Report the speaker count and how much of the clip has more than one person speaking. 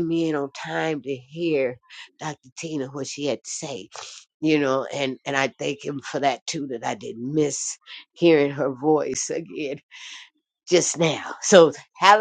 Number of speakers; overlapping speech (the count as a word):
one, no overlap